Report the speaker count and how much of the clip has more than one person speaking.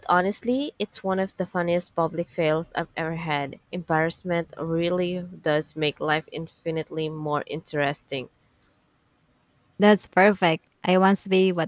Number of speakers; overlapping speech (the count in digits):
2, no overlap